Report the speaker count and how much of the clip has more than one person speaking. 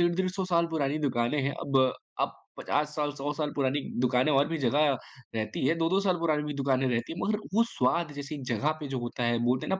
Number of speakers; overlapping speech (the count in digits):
1, no overlap